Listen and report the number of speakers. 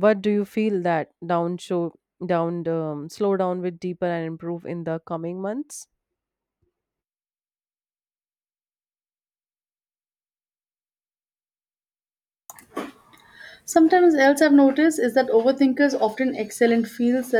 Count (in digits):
2